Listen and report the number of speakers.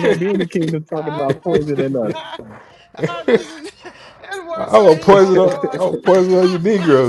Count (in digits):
3